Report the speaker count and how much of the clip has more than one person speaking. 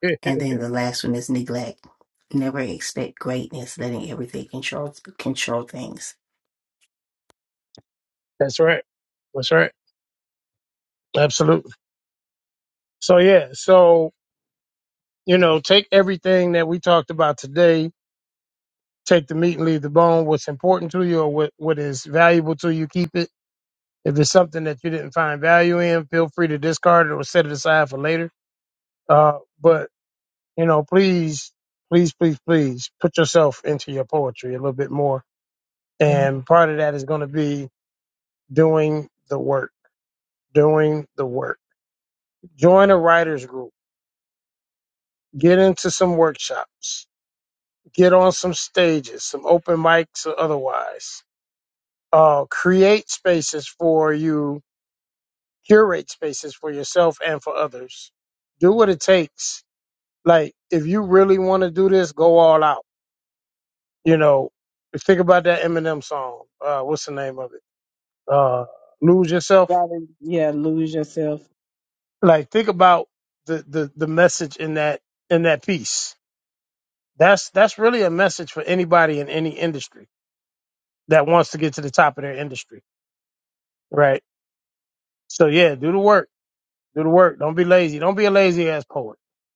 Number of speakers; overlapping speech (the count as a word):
three, no overlap